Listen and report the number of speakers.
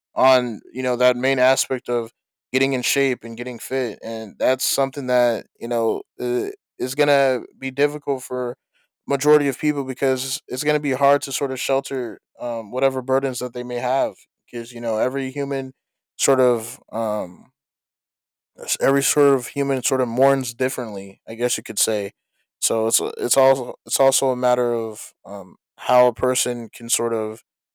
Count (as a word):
one